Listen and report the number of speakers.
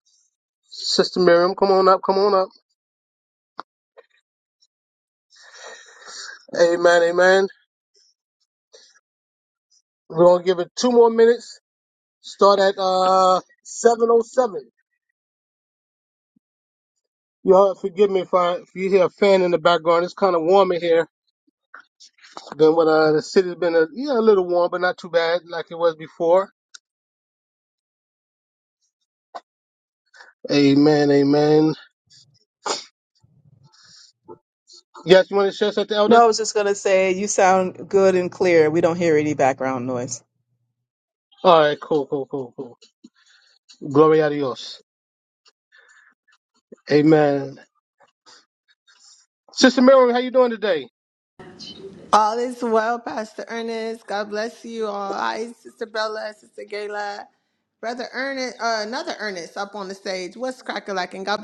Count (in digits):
3